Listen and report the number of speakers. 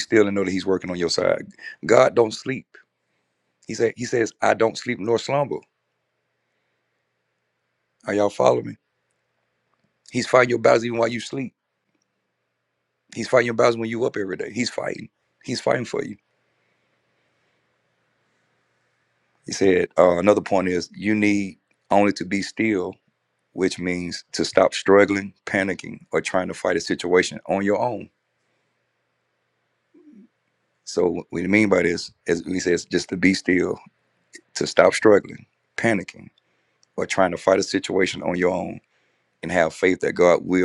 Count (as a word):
one